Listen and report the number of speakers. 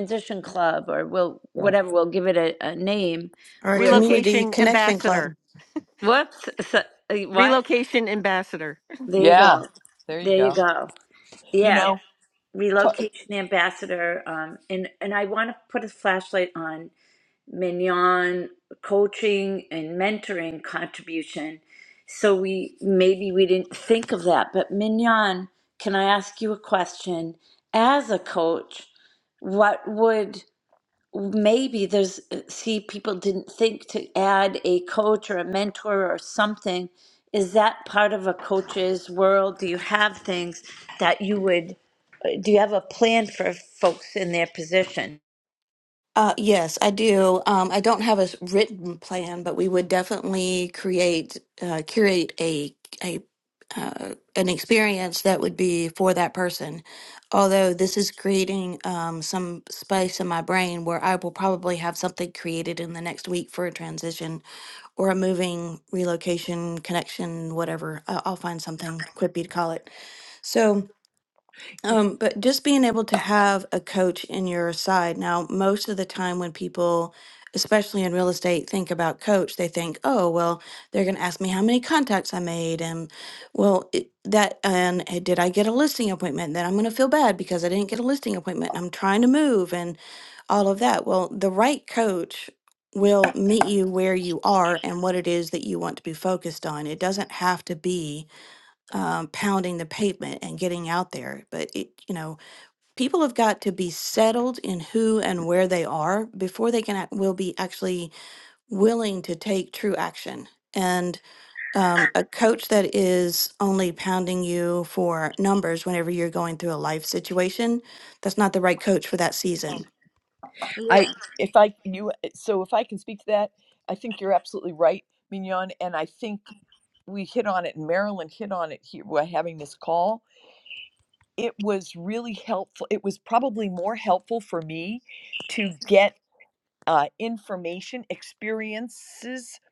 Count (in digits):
4